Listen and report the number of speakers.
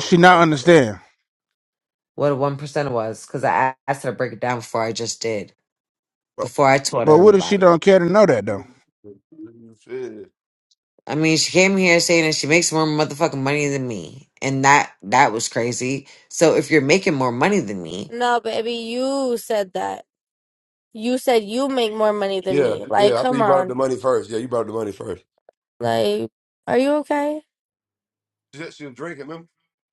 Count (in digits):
4